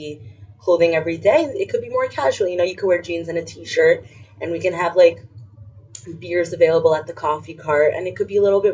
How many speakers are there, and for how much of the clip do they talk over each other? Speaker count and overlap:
one, no overlap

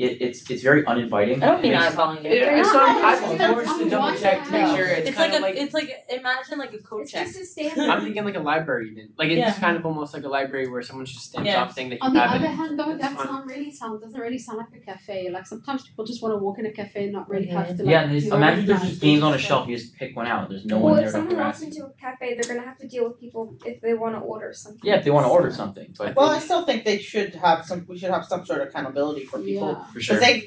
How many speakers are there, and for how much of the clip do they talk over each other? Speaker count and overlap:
six, about 41%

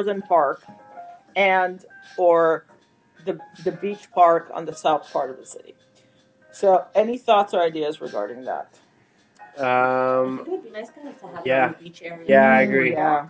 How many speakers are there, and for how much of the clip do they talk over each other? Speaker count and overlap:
three, about 16%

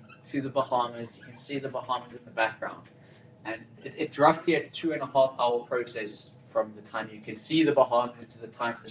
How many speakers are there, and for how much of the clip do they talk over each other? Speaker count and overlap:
one, no overlap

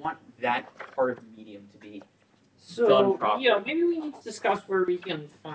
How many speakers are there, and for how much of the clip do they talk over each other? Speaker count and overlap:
two, about 14%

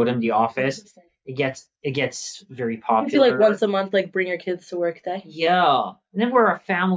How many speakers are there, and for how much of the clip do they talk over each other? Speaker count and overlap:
two, about 13%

